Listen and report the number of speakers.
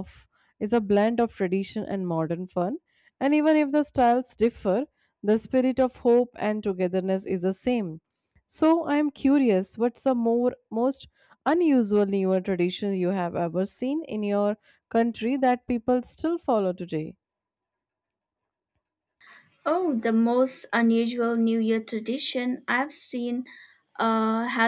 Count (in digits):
2